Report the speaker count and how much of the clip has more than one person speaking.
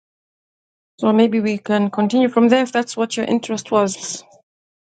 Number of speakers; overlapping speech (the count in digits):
1, no overlap